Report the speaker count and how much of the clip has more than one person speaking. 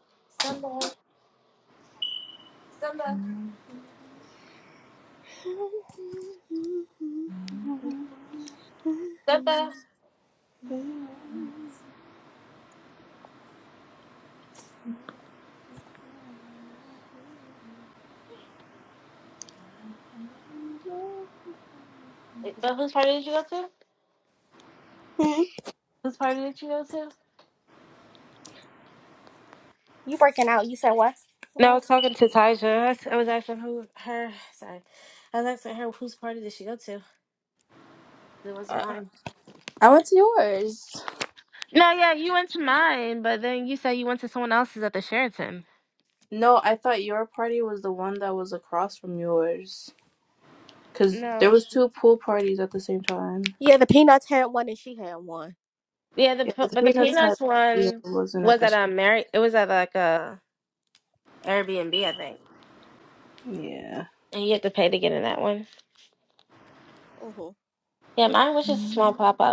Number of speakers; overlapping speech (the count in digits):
3, about 4%